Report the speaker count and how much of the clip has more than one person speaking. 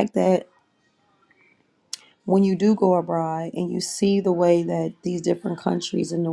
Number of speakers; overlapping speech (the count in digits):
1, no overlap